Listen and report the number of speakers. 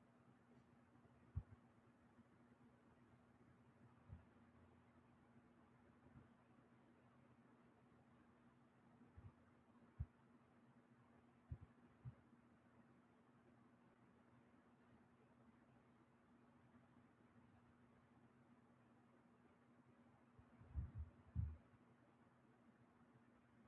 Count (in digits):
0